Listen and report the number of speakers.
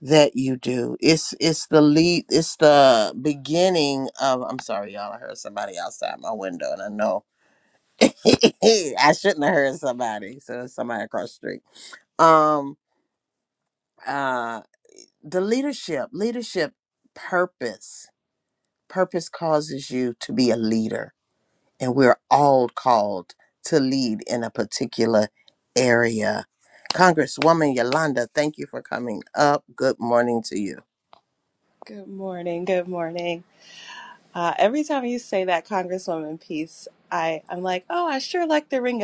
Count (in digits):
2